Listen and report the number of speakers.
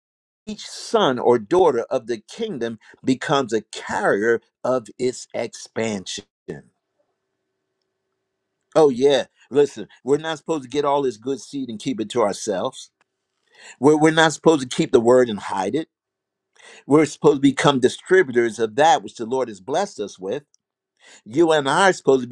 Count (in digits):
1